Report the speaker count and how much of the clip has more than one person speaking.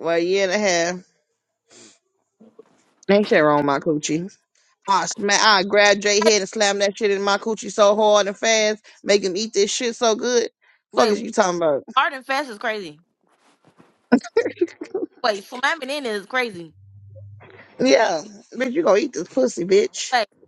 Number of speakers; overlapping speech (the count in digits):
2, about 2%